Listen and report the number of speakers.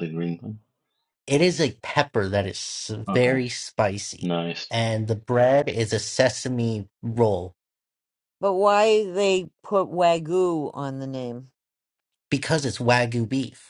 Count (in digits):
3